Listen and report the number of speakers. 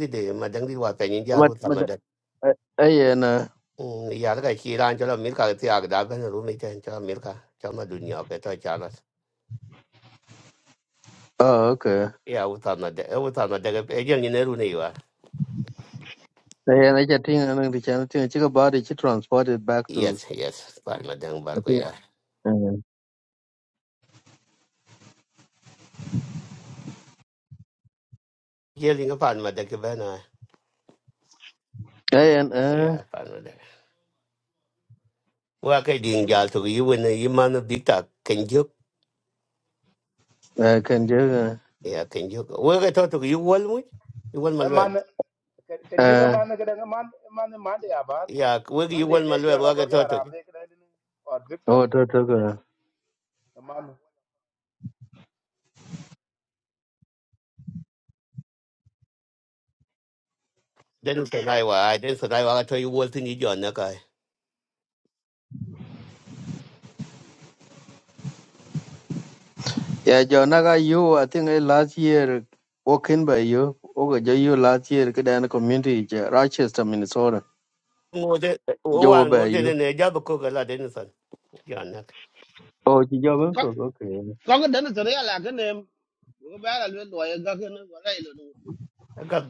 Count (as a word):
four